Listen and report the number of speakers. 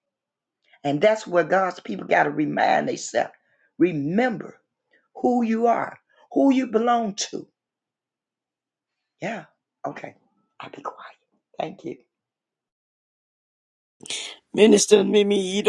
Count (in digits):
2